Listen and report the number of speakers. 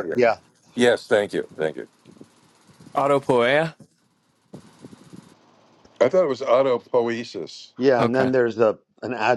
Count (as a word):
three